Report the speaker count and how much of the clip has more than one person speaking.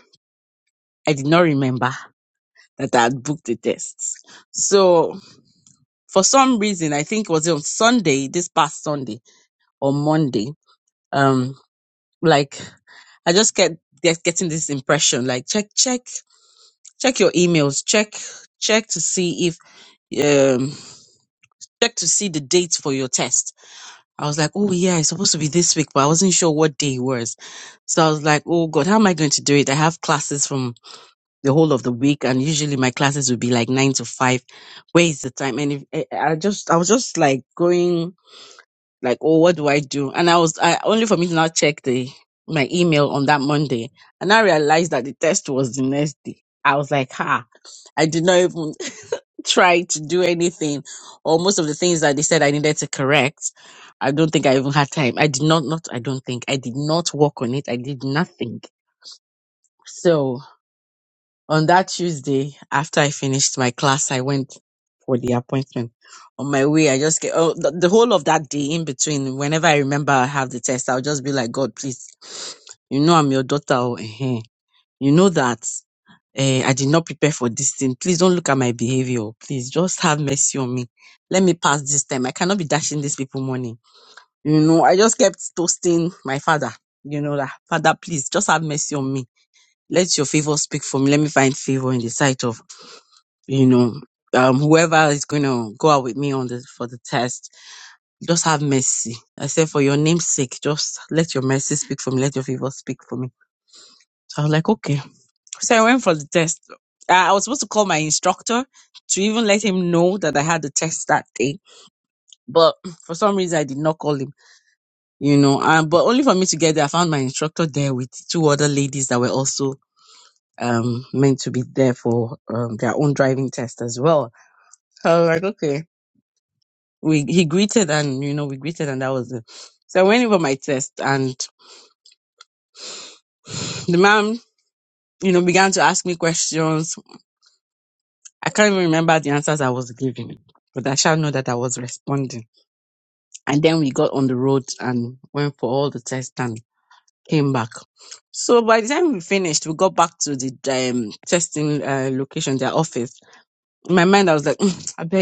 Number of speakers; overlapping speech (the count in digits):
1, no overlap